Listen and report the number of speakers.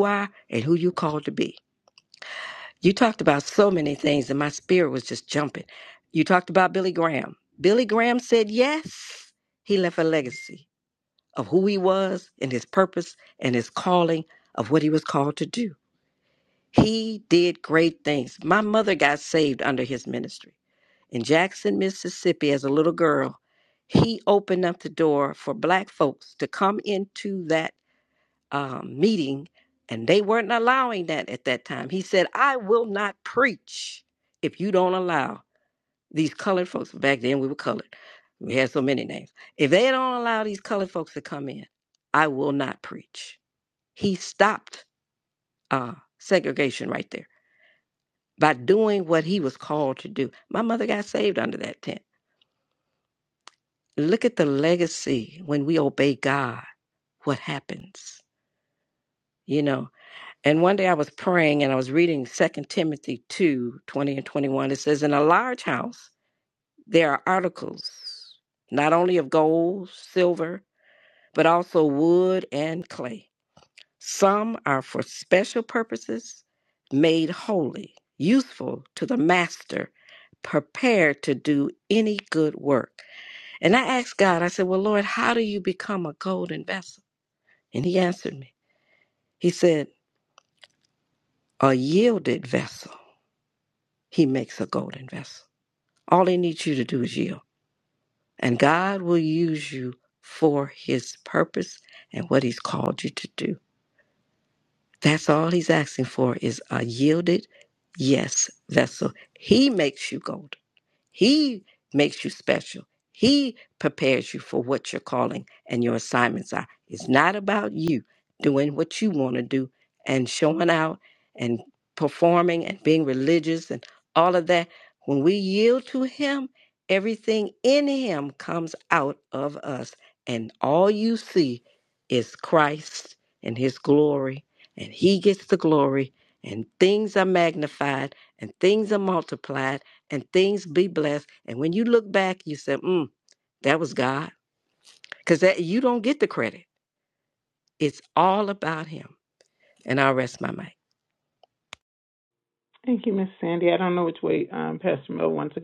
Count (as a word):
two